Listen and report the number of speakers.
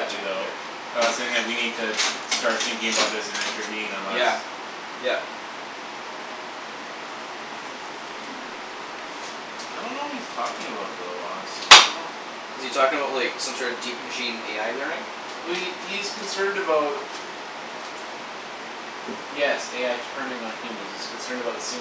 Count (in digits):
2